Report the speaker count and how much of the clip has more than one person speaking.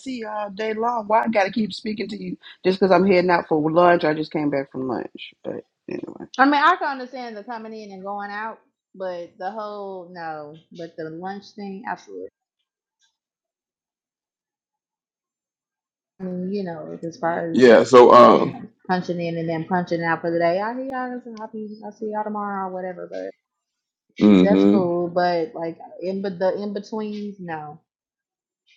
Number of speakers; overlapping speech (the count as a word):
three, about 3%